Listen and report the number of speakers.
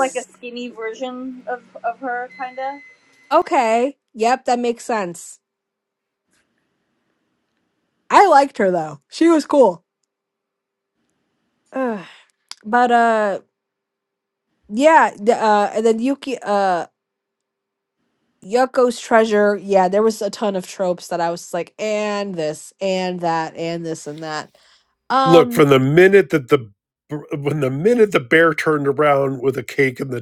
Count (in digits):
3